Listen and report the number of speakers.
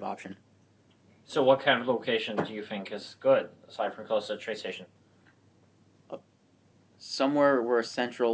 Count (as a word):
two